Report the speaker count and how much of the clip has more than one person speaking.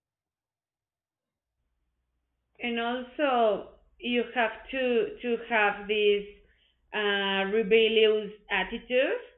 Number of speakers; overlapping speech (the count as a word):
one, no overlap